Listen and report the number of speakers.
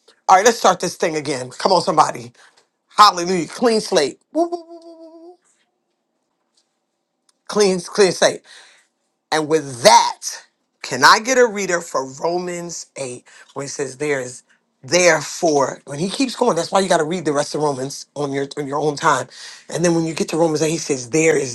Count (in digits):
1